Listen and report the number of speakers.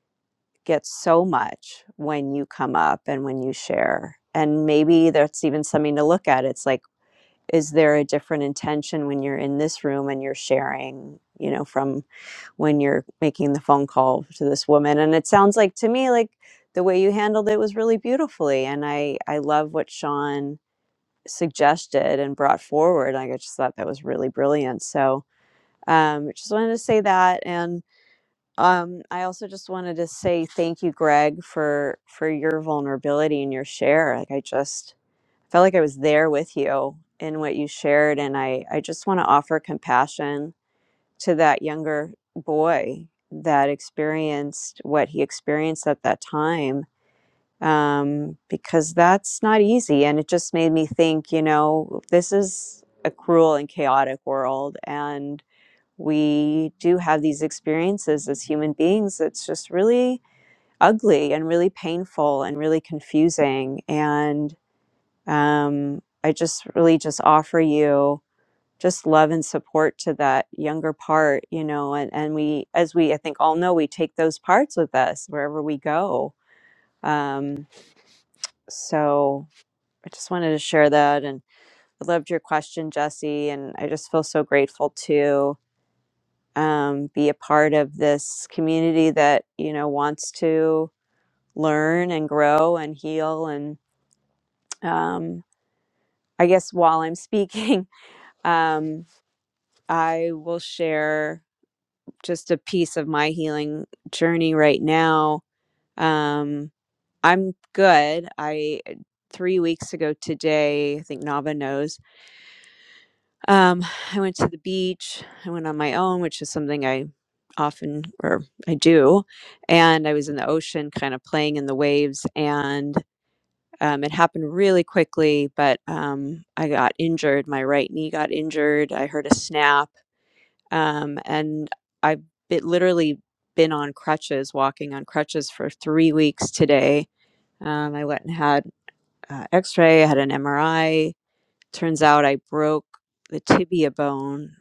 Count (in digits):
1